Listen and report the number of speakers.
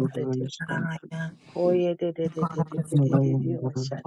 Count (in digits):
3